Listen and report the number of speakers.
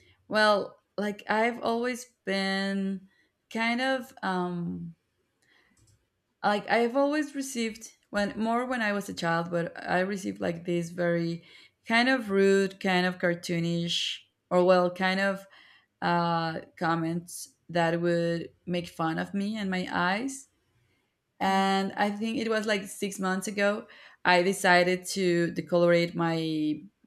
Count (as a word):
one